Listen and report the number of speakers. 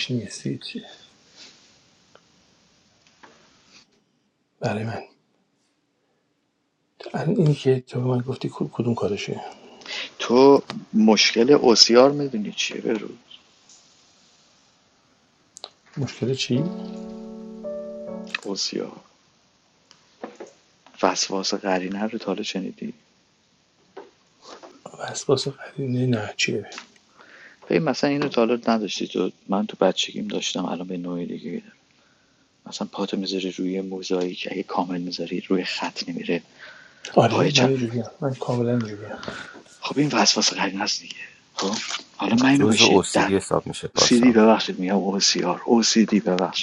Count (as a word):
three